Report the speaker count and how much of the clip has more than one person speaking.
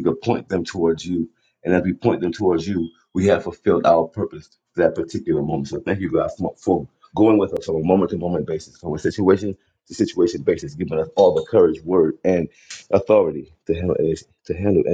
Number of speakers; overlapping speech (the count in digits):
1, no overlap